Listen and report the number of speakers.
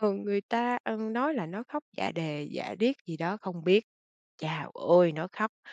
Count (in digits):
1